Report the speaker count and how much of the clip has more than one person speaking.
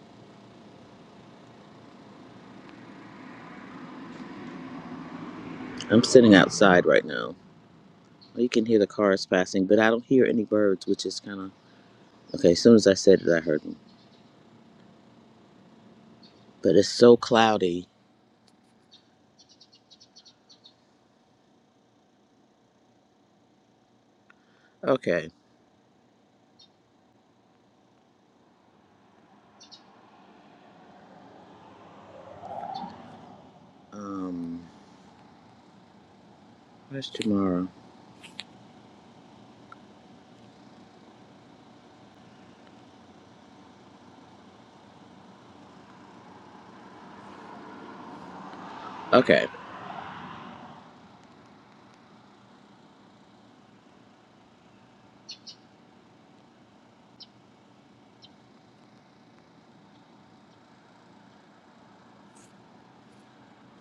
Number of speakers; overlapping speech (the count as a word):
one, no overlap